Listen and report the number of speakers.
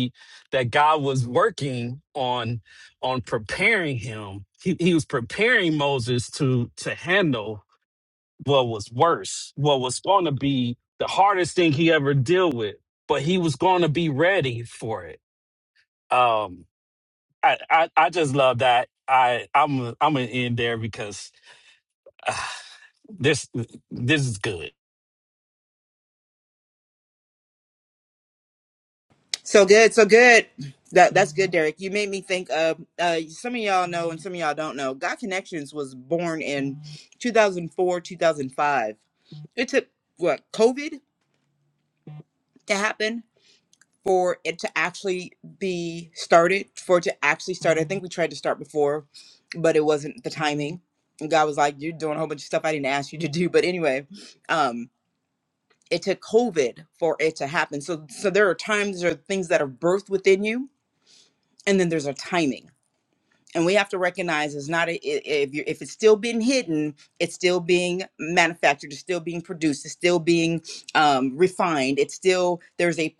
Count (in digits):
2